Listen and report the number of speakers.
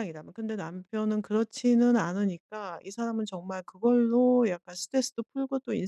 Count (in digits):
1